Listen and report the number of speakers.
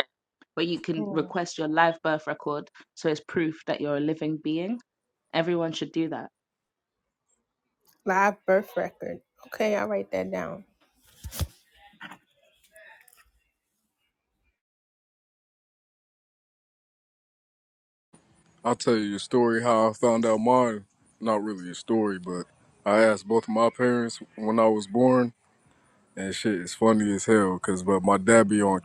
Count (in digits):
3